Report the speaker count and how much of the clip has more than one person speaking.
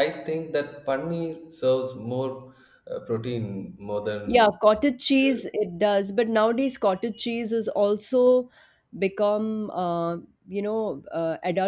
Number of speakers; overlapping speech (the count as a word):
two, about 2%